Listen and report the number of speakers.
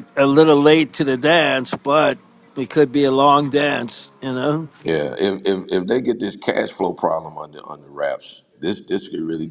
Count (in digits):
2